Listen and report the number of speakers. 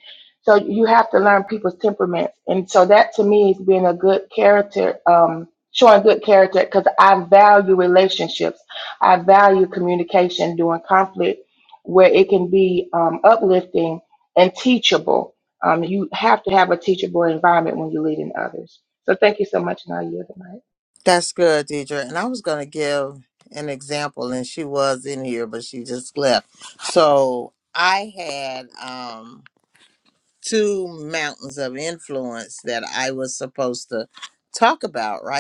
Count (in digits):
2